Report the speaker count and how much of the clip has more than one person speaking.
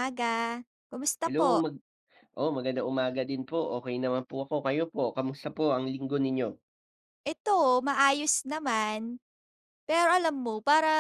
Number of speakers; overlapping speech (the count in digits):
2, about 3%